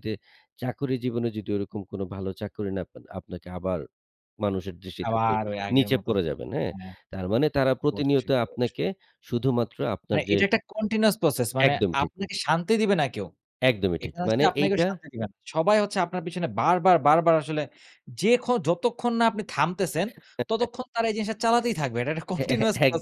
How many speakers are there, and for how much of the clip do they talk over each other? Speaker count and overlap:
two, about 17%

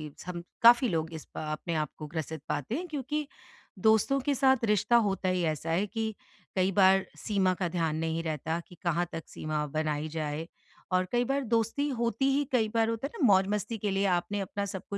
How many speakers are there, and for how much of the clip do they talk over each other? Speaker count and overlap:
one, no overlap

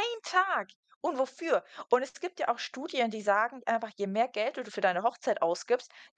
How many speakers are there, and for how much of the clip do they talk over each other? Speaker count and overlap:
one, no overlap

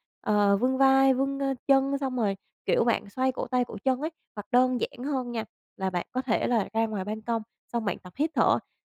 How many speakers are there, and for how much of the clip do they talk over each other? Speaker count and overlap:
one, no overlap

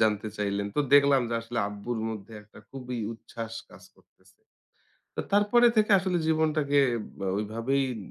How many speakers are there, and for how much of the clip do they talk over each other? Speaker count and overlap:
one, no overlap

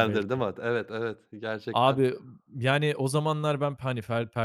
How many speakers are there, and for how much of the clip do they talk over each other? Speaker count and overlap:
two, about 15%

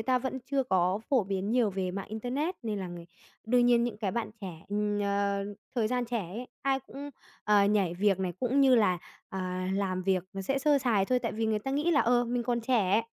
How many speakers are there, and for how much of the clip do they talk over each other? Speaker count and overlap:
one, no overlap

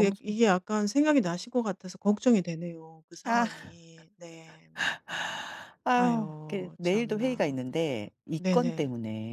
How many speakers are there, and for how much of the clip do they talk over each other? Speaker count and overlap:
two, about 27%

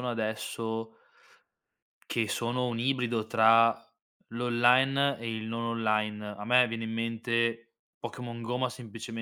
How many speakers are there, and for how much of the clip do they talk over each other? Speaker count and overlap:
one, no overlap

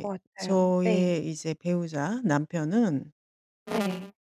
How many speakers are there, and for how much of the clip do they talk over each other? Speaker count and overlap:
two, about 18%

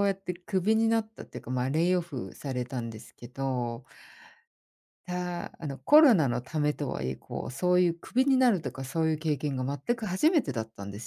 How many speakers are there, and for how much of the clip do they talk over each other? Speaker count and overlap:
one, no overlap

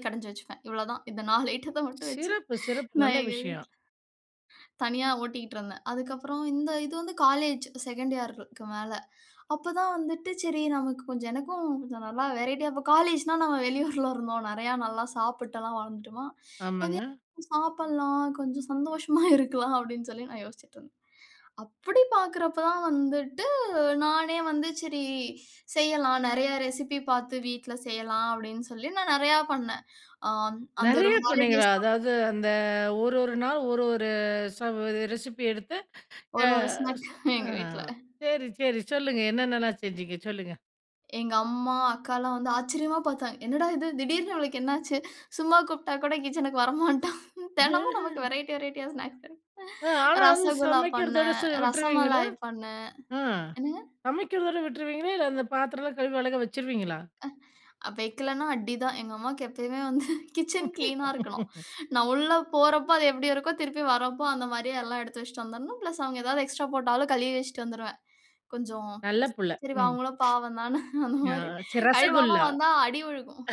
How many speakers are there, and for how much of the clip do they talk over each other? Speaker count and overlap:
two, about 8%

